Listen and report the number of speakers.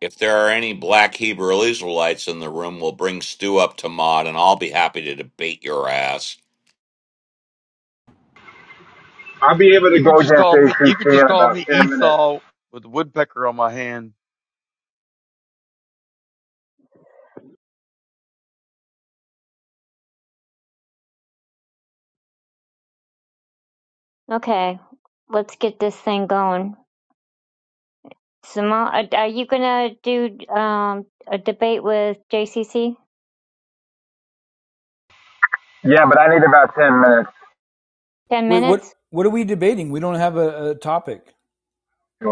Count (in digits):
5